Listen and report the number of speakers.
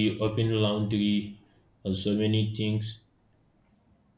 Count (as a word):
one